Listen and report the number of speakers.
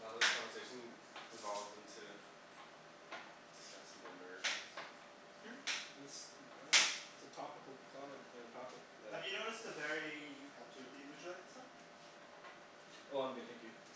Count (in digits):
3